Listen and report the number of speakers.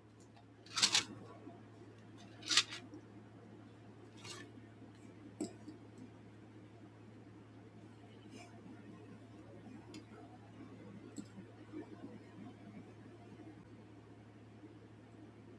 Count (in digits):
0